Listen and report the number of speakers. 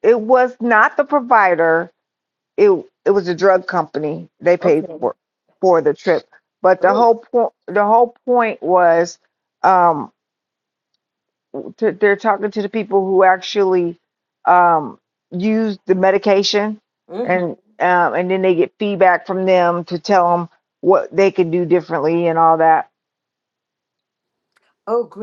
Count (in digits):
2